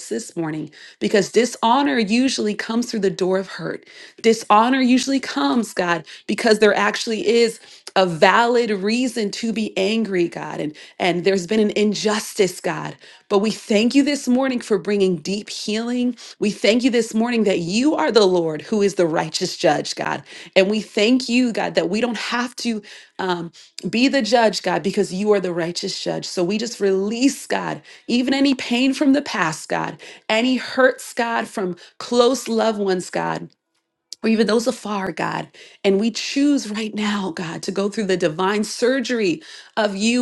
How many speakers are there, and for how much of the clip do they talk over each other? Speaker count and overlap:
1, no overlap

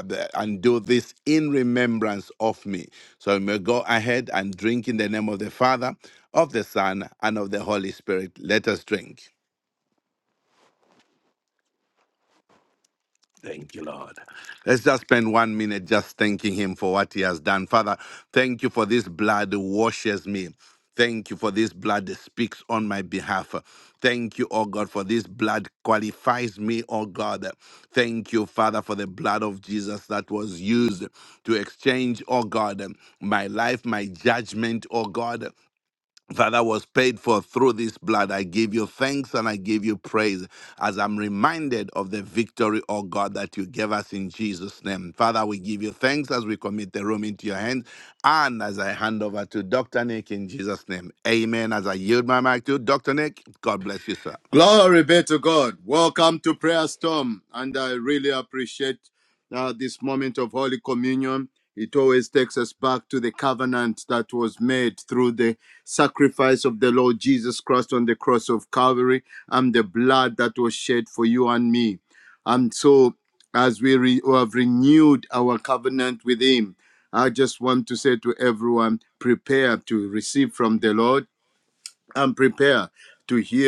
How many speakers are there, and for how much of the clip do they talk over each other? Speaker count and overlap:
2, no overlap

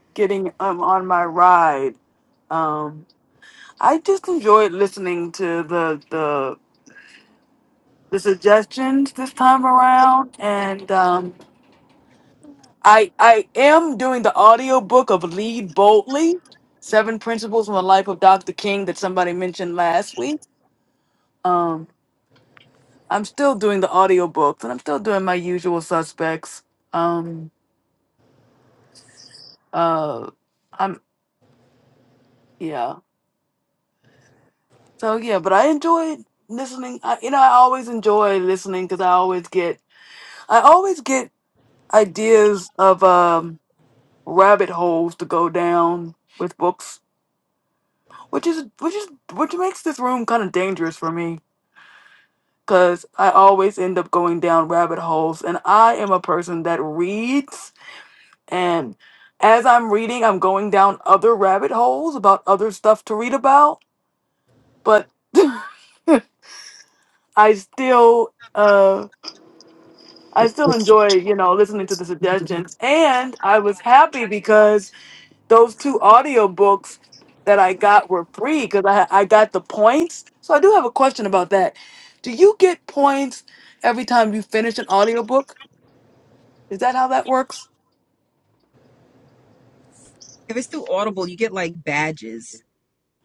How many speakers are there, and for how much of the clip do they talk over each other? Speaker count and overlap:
2, no overlap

